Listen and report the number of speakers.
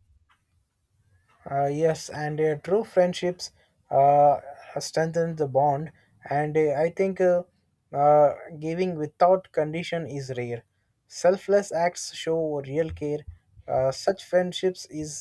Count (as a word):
one